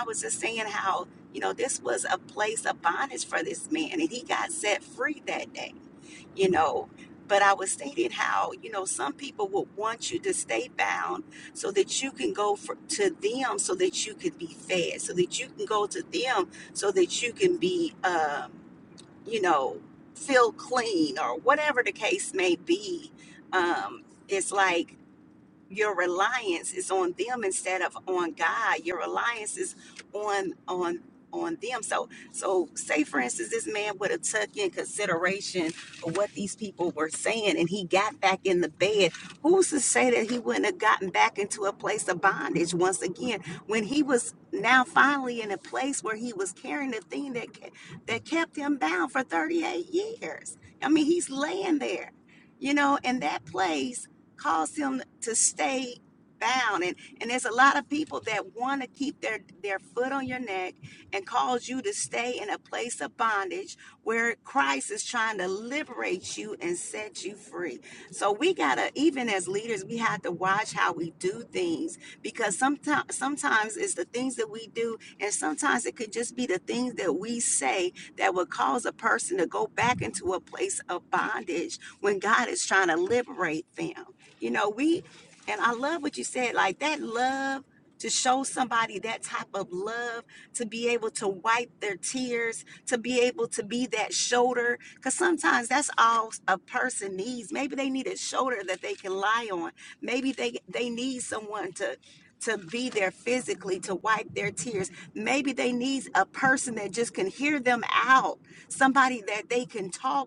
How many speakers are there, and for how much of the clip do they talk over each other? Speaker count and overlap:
one, no overlap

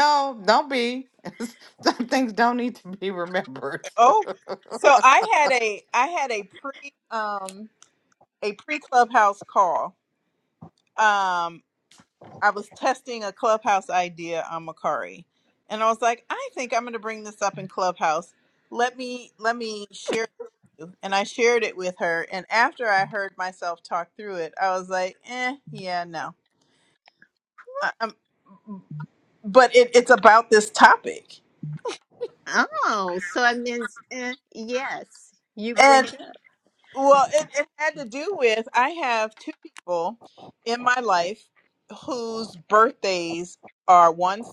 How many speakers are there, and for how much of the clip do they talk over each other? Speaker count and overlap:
three, no overlap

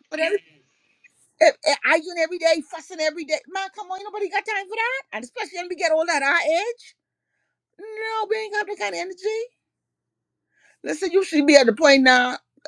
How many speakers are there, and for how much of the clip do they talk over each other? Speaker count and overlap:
one, no overlap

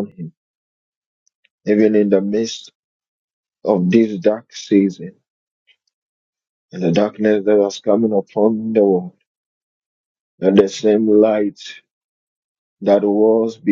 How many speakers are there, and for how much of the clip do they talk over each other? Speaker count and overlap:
one, no overlap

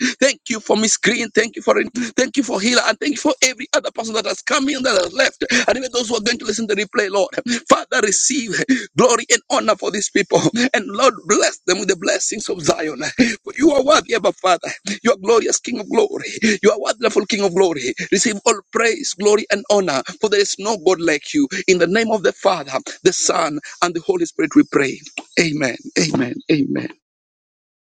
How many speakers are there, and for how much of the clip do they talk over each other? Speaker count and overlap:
one, no overlap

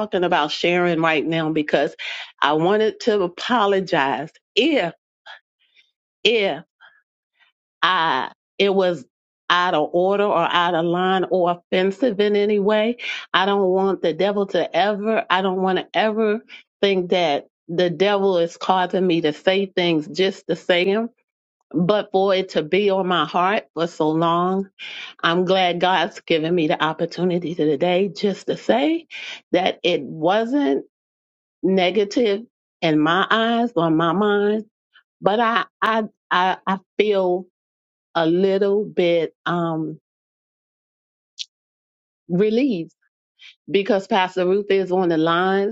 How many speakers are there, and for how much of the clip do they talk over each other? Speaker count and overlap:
one, no overlap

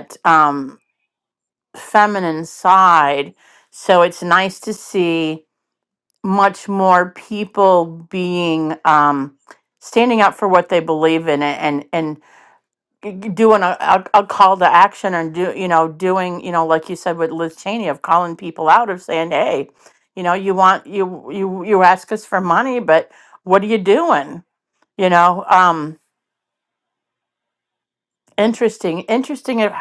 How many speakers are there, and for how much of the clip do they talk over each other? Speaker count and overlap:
one, no overlap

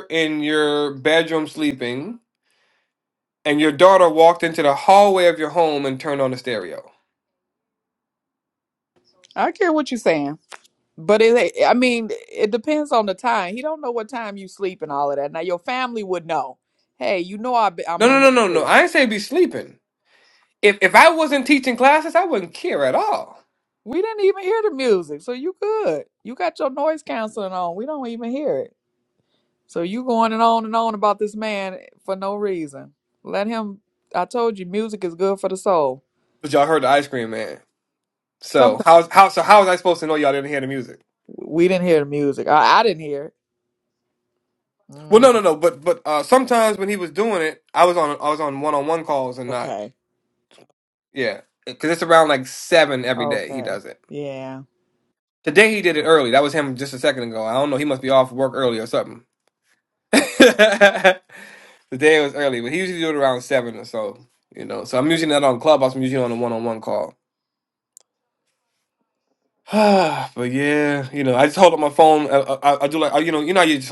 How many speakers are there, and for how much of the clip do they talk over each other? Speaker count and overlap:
two, about 3%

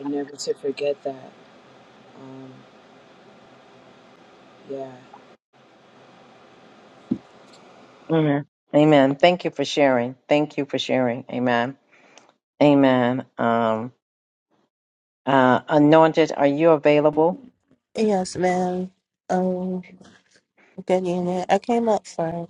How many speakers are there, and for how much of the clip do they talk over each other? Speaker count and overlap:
three, no overlap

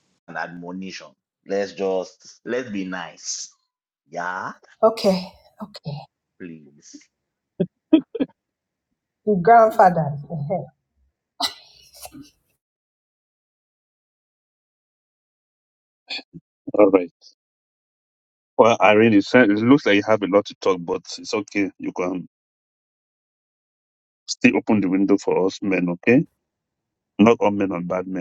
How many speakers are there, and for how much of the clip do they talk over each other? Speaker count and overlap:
three, no overlap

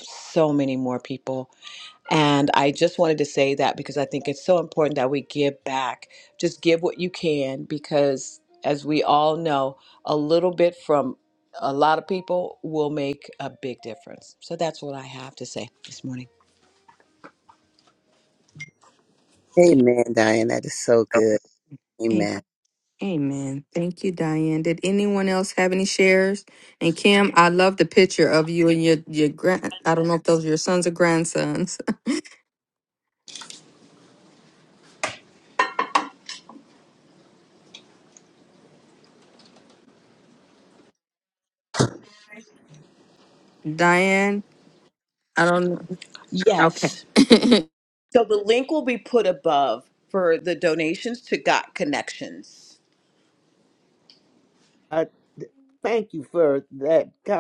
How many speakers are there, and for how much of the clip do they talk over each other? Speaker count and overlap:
four, about 1%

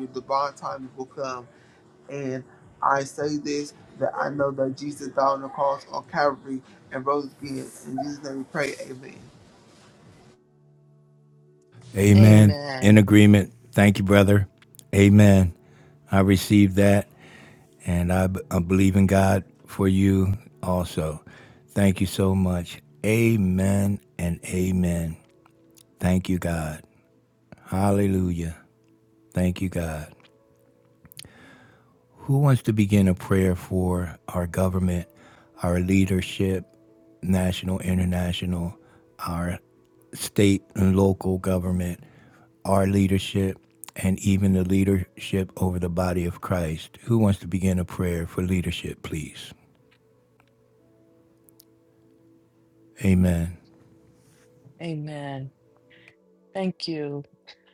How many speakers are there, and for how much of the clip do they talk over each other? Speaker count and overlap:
three, about 1%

